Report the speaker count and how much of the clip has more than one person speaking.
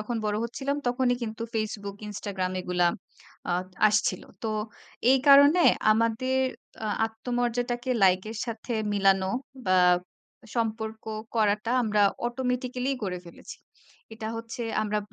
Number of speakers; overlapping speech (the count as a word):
one, no overlap